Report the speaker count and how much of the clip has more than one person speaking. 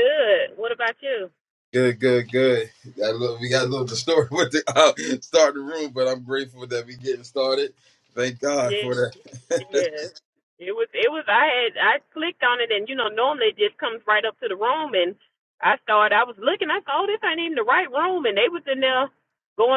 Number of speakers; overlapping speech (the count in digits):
2, about 2%